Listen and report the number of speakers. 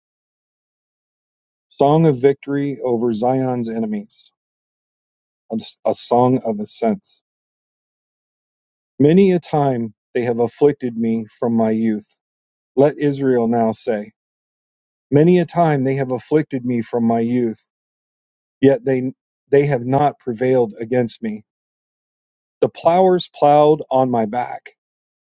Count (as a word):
one